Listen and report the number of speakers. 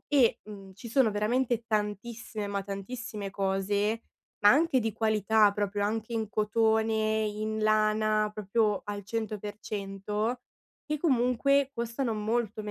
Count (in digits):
1